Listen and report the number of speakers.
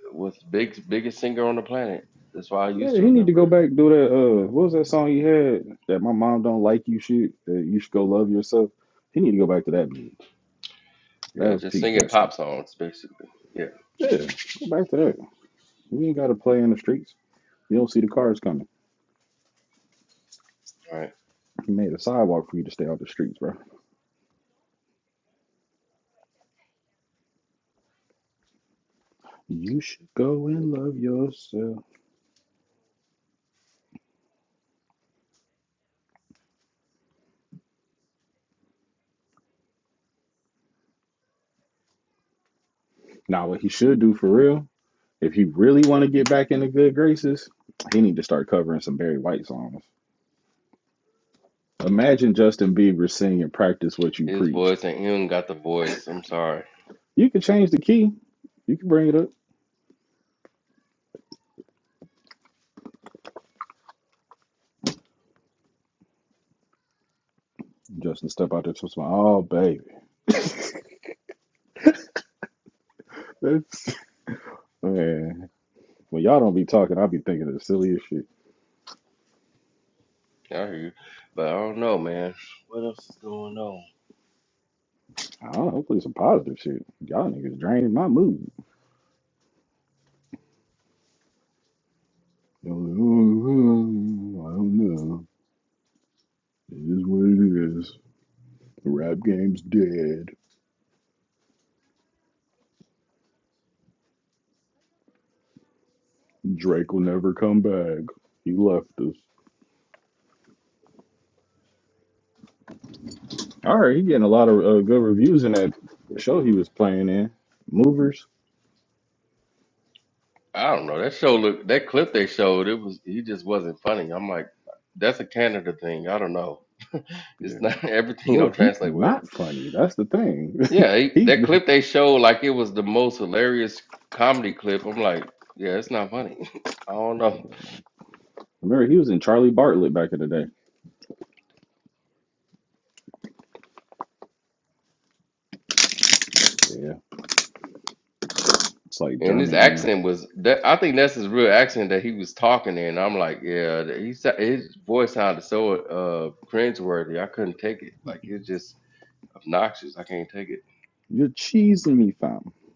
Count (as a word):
two